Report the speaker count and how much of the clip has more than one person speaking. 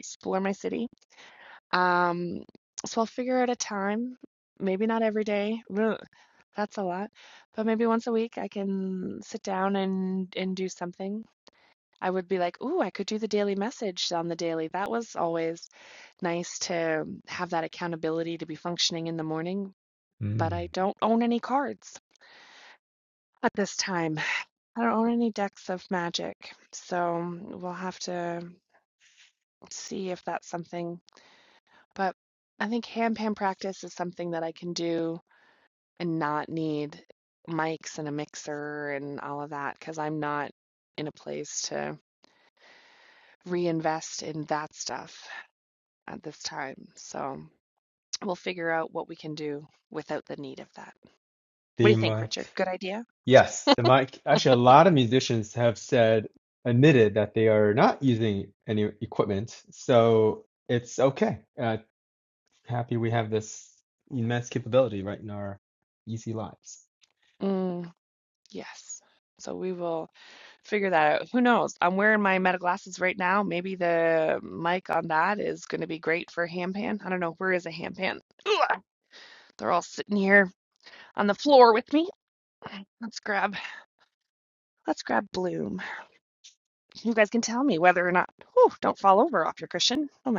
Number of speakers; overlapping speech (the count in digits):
2, about 1%